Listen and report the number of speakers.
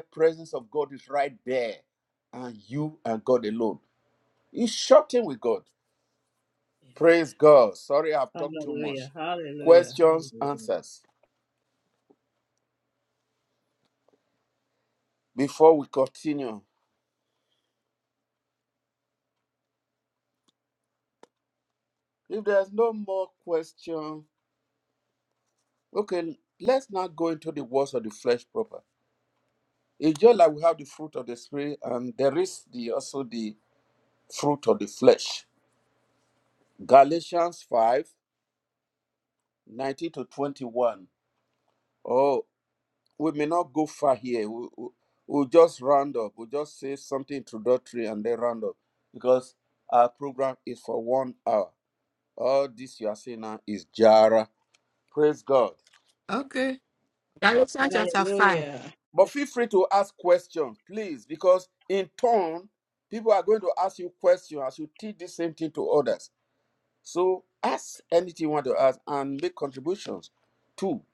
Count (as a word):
three